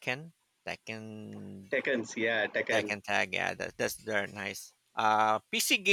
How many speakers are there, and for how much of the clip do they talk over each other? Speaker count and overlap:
2, about 4%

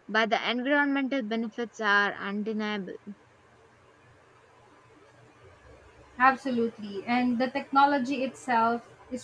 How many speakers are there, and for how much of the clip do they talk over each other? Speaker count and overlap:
2, no overlap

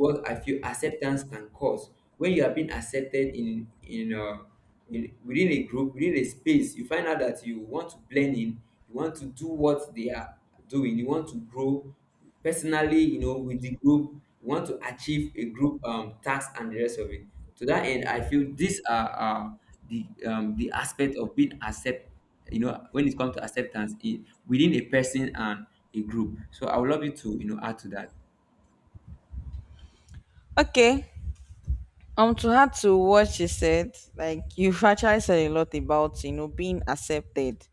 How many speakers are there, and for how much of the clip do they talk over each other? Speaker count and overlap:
2, no overlap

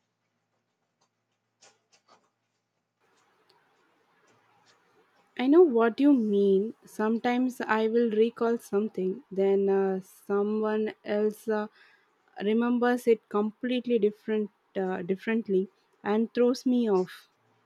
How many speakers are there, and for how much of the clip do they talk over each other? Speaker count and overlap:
1, no overlap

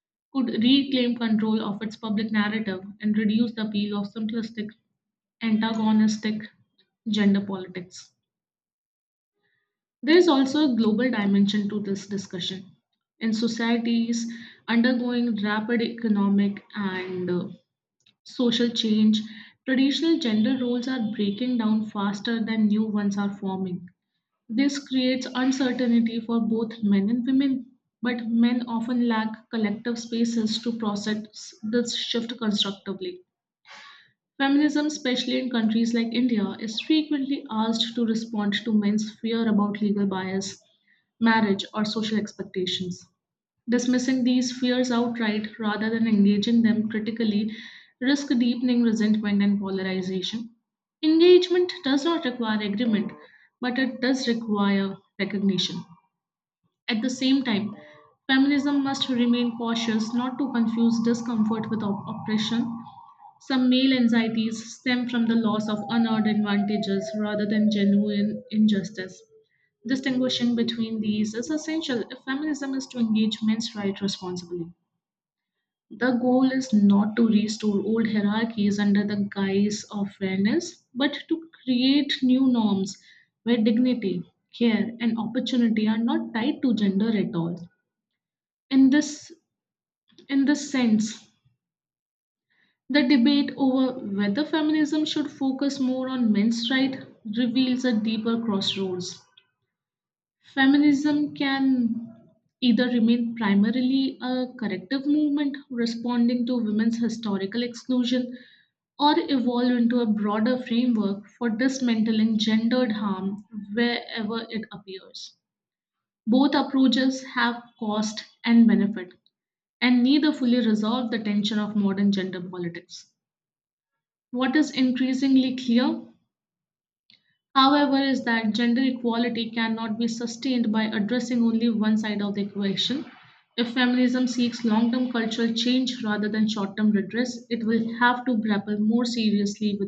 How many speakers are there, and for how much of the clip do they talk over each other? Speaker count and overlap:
1, no overlap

